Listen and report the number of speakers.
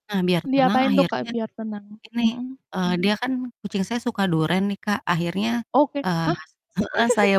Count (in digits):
2